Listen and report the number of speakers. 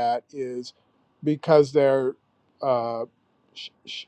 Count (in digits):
1